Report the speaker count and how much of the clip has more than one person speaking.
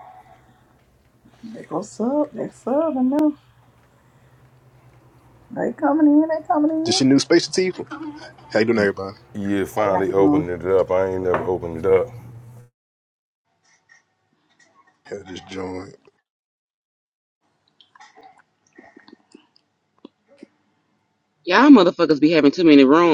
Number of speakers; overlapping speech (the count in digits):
4, about 4%